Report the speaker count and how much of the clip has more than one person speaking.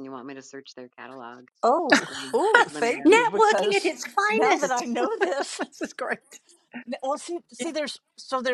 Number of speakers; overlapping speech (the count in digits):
3, about 23%